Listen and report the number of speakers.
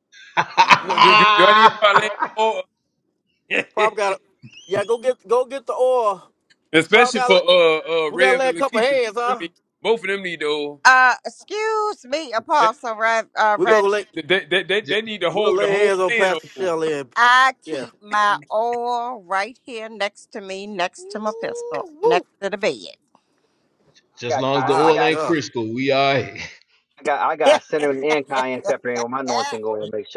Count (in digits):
5